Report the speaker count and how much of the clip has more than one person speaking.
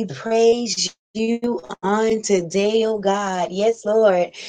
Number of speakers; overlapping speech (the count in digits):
1, no overlap